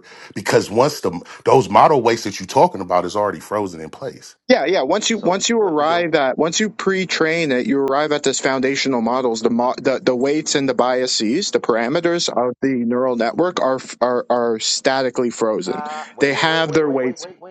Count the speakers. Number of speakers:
3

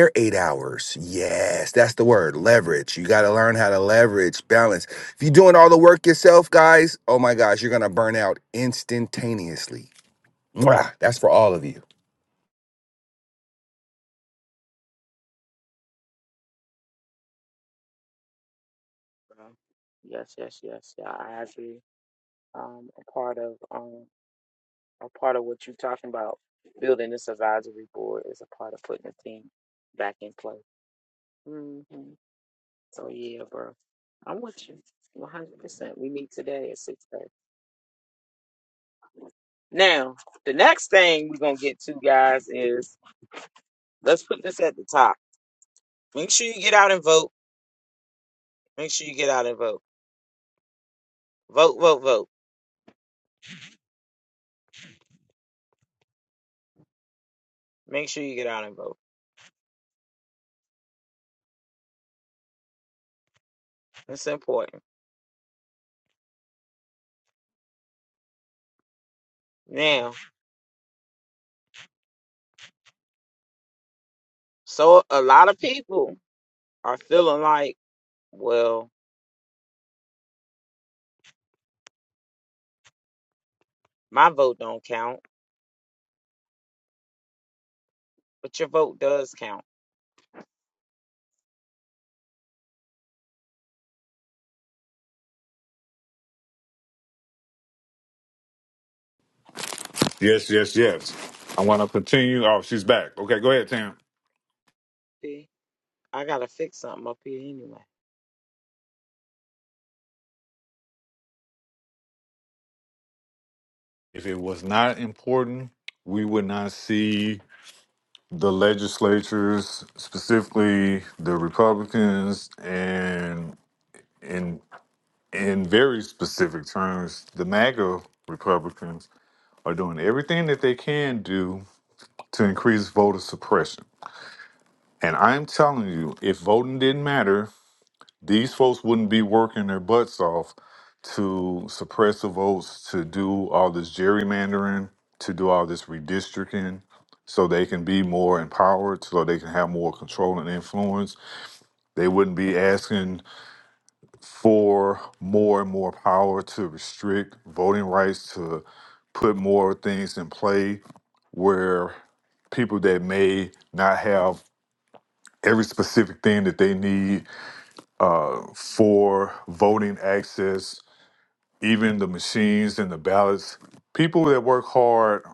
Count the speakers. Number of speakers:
3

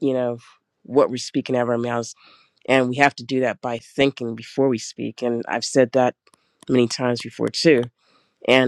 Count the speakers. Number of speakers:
1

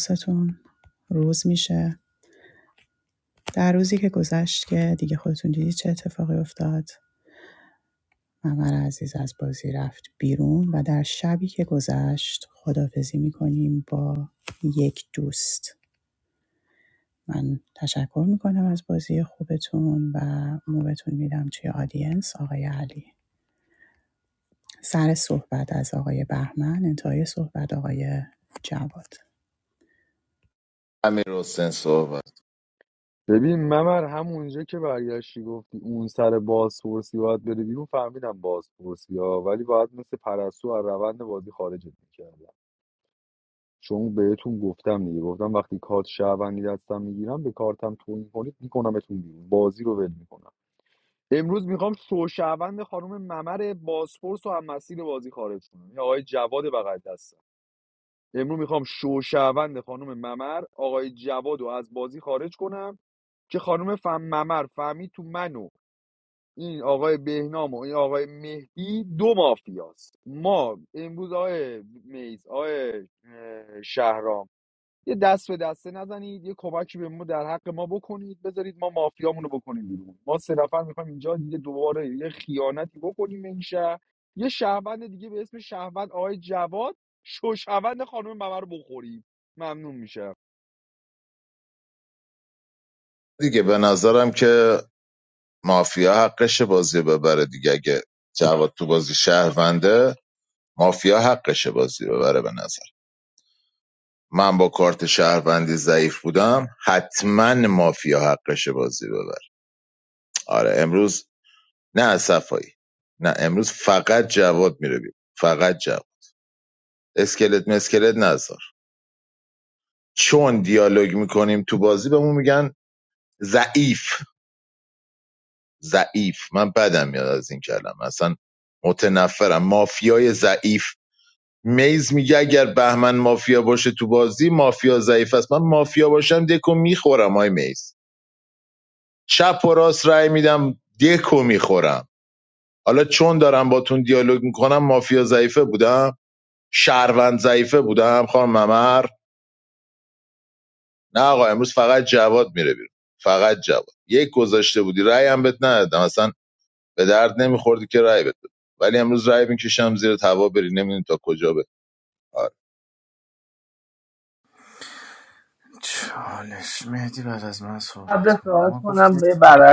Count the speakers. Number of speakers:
5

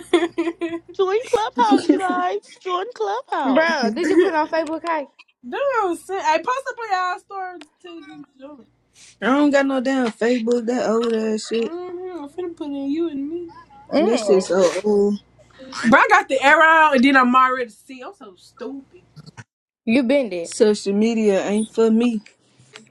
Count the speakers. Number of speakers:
4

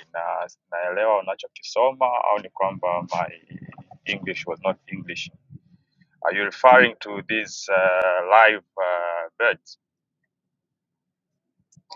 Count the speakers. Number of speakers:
1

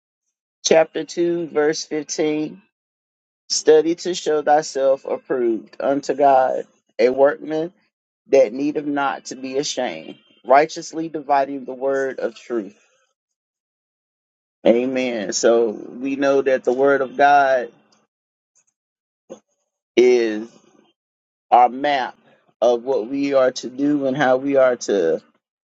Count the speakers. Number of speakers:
1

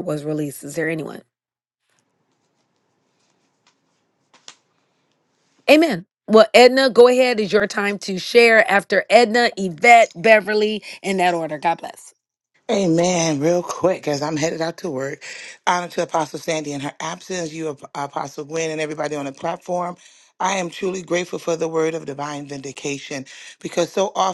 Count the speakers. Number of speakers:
2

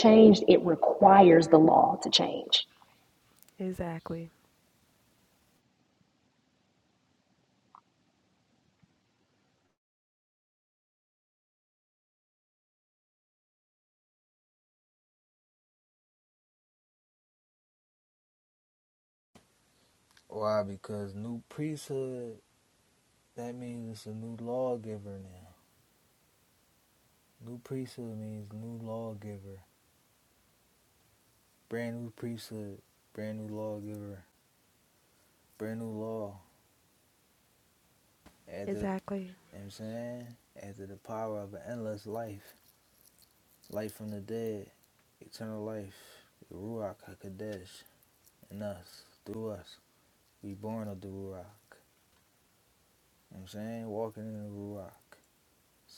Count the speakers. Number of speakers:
3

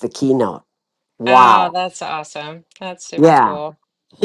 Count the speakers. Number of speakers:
2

